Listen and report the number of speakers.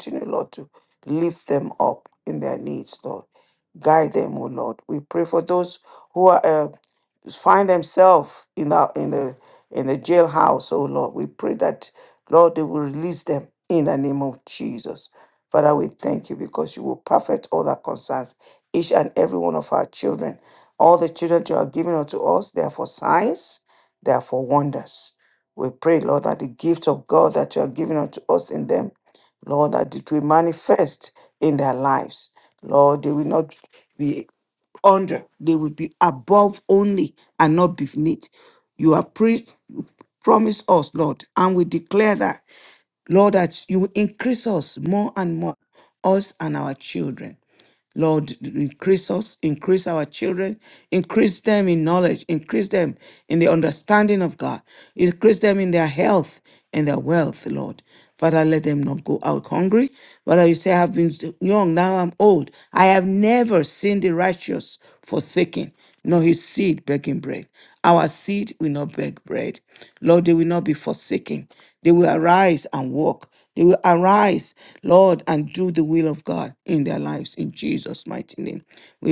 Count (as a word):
one